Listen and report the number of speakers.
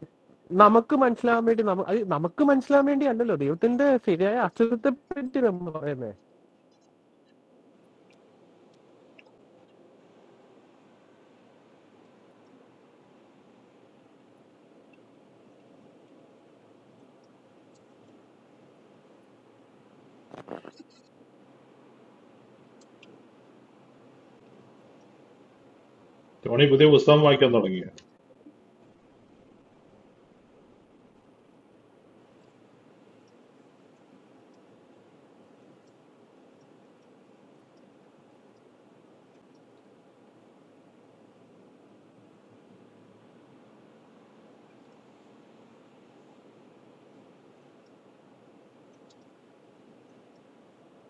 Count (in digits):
2